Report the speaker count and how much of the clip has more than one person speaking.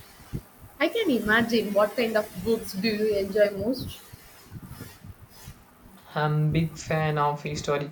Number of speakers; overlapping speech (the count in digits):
2, no overlap